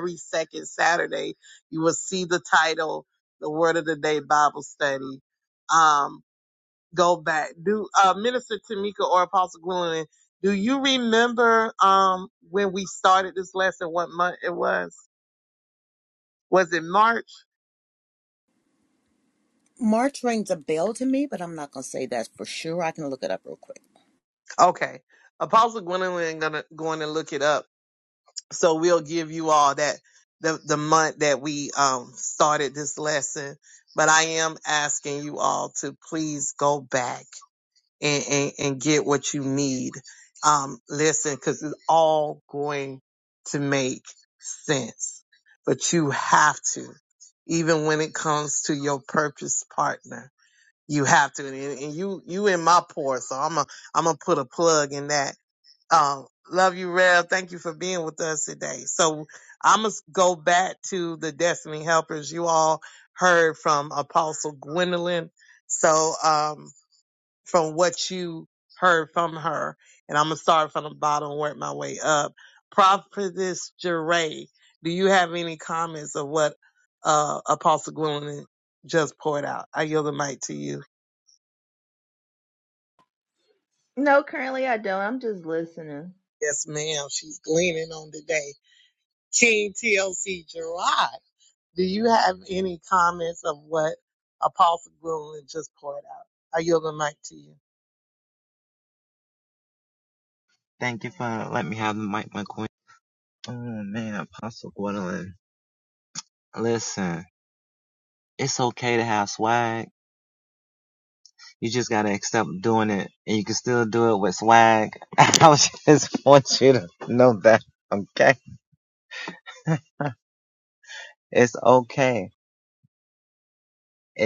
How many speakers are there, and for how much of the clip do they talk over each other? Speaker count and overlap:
4, no overlap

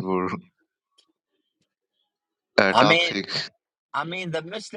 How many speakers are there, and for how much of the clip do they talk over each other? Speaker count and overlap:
2, about 10%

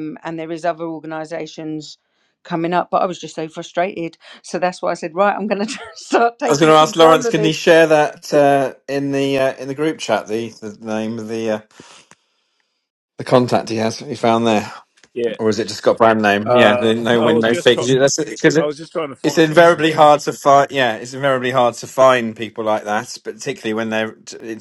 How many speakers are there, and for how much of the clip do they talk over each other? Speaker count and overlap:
3, about 14%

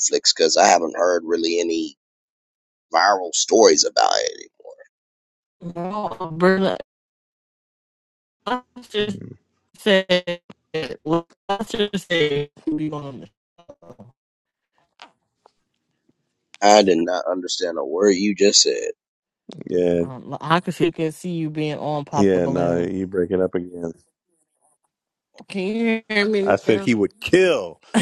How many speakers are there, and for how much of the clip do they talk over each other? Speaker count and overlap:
3, about 4%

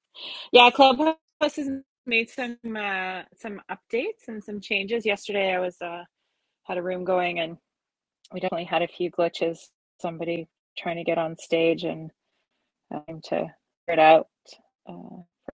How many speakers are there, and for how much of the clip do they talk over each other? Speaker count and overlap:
1, no overlap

